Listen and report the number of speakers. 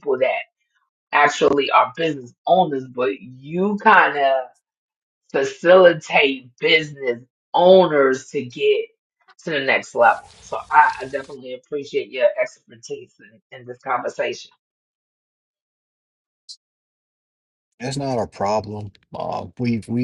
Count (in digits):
2